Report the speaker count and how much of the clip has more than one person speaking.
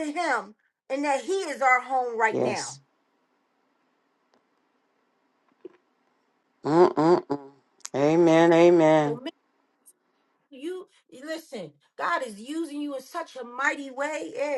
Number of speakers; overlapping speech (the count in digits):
2, about 2%